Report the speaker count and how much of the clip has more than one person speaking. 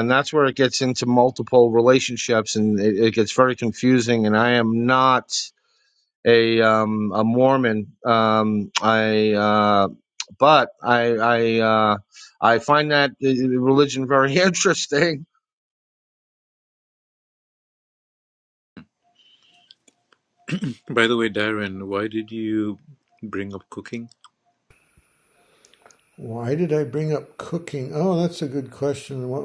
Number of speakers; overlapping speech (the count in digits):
3, no overlap